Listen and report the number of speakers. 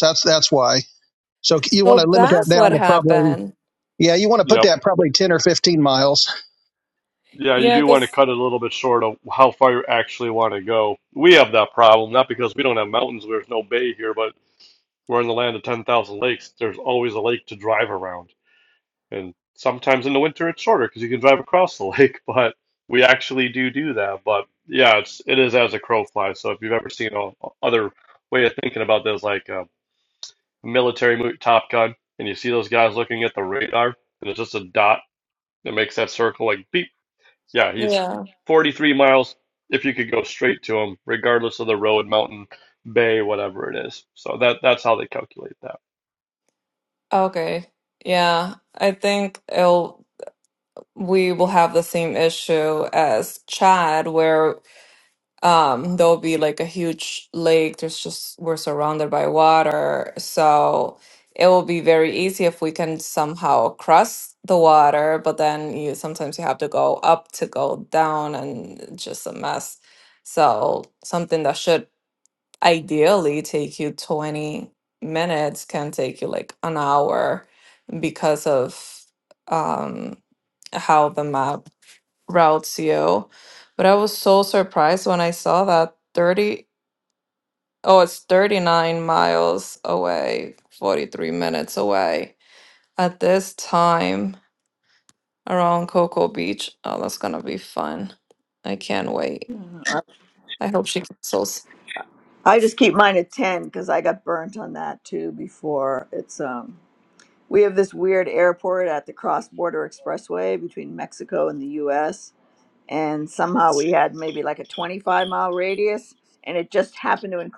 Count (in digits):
4